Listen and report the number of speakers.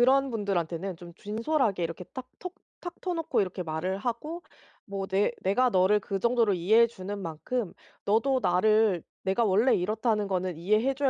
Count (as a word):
one